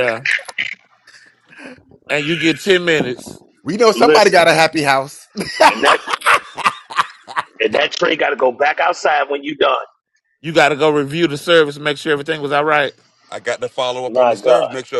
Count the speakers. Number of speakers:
4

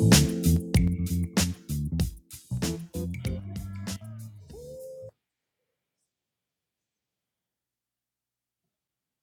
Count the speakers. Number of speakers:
0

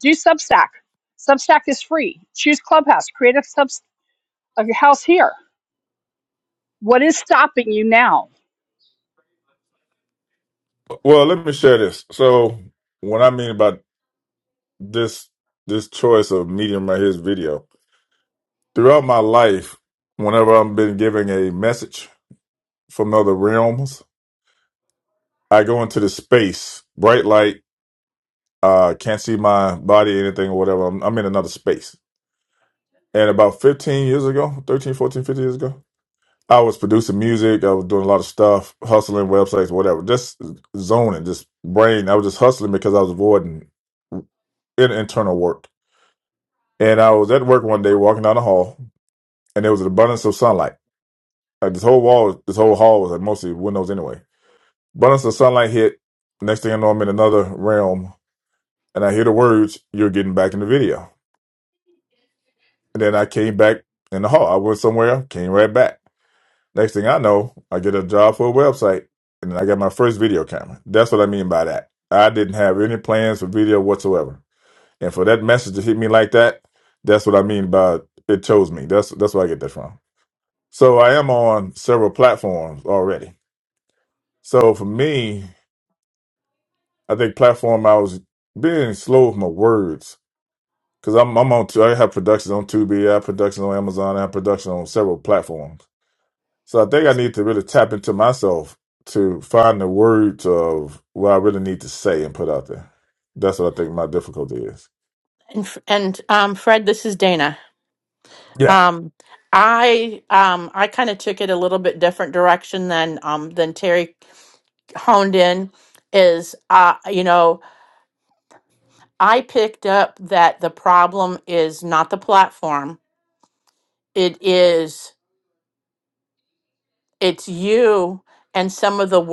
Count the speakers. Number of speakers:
3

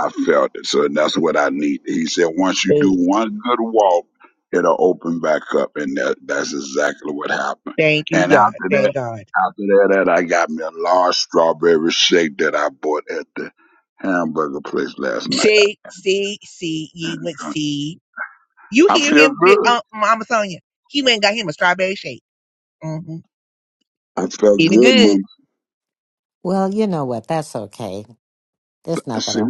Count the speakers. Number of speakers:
3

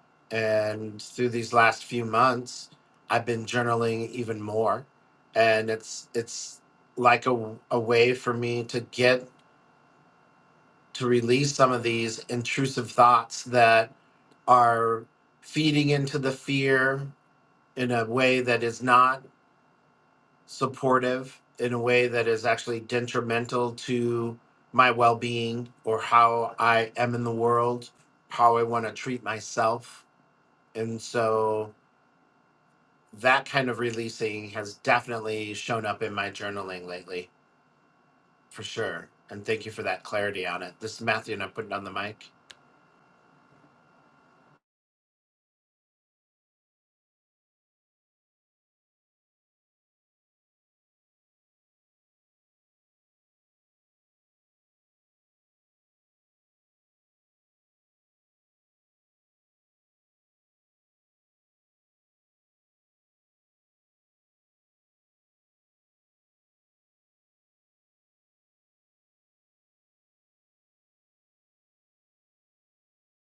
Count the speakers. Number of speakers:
1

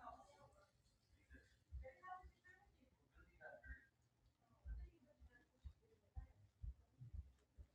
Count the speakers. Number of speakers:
0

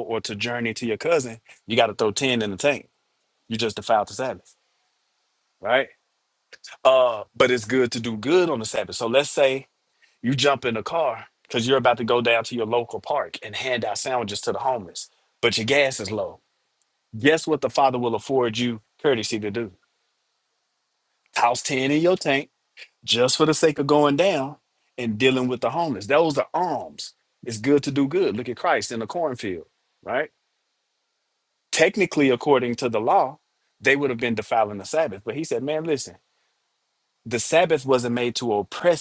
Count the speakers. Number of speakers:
1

